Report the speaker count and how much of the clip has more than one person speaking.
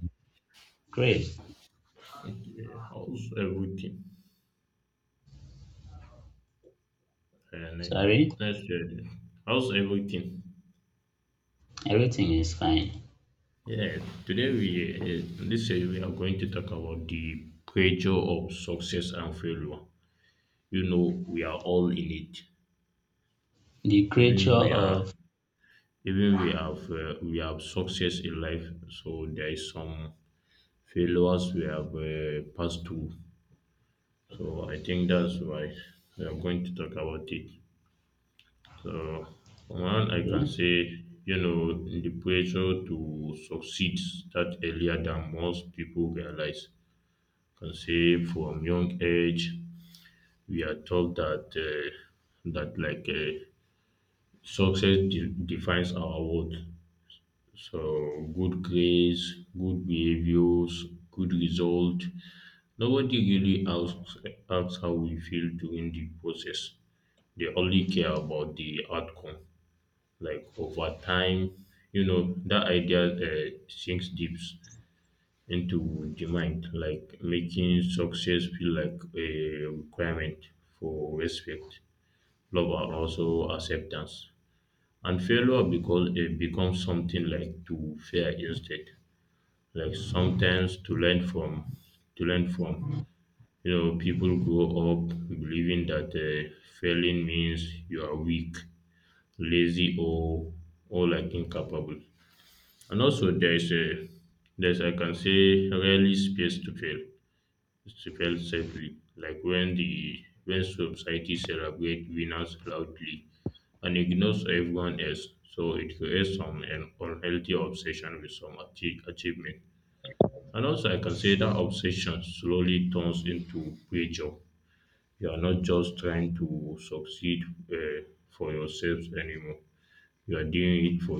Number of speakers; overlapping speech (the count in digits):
2, about 1%